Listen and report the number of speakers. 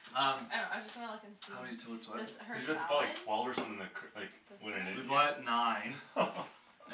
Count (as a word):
three